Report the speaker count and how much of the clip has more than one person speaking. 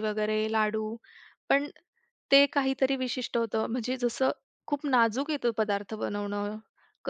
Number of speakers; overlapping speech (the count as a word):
one, no overlap